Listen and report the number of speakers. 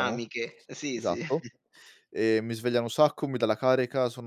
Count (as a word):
two